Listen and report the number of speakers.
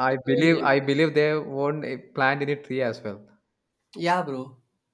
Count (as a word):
two